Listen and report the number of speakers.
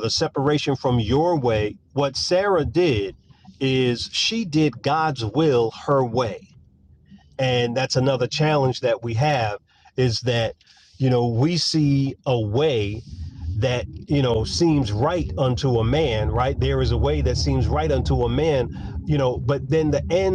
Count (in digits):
1